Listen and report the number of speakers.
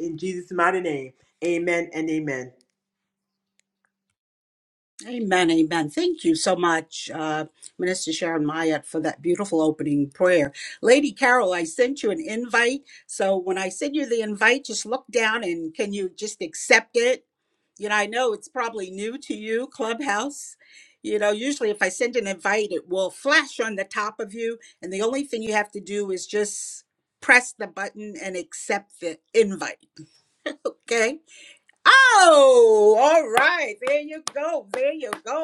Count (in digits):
2